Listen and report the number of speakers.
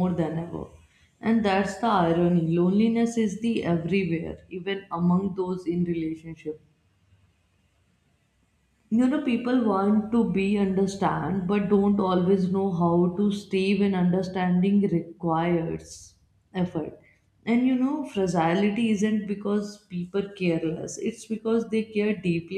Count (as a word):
one